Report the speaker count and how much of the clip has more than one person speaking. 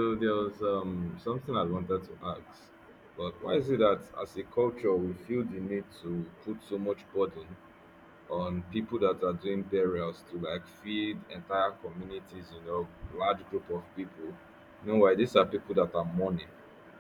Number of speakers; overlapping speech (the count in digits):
1, no overlap